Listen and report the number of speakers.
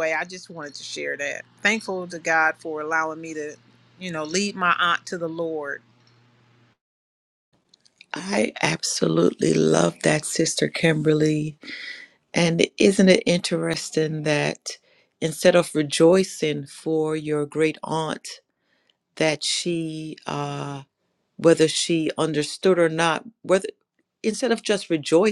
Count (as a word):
two